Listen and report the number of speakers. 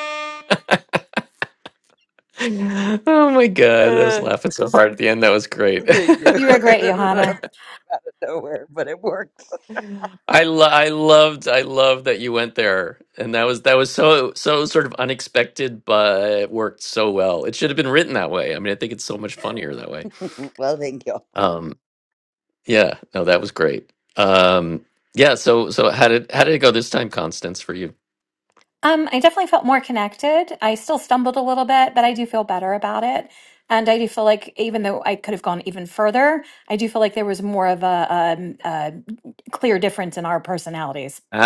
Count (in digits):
3